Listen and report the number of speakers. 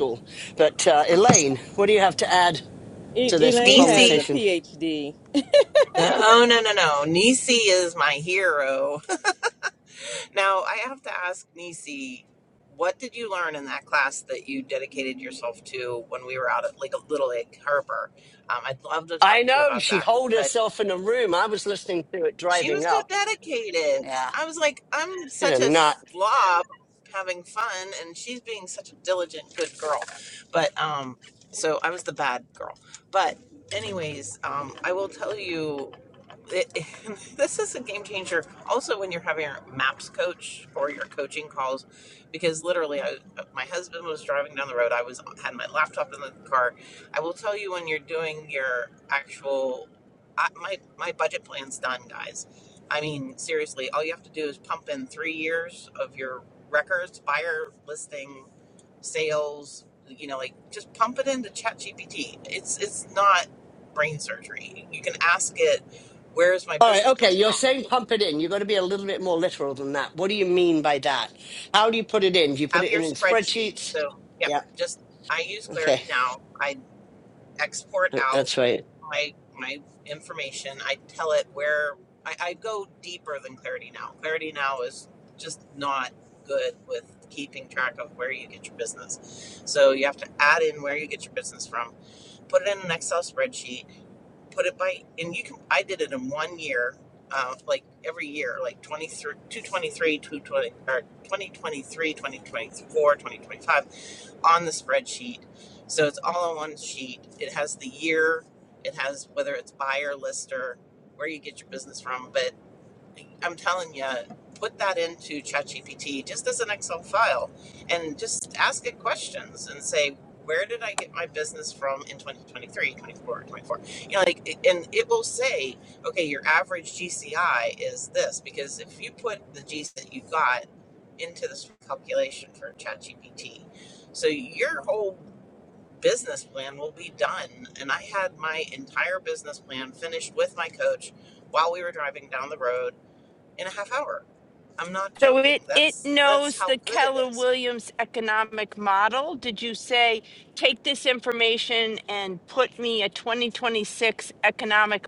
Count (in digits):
4